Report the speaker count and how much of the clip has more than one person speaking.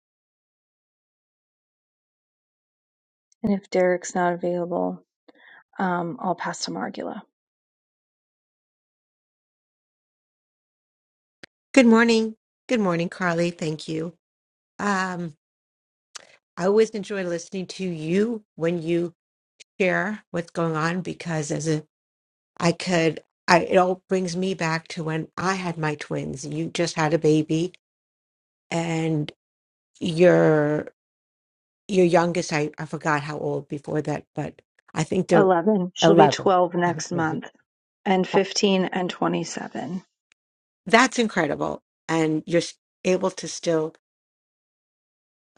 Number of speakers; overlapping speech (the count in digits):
2, about 1%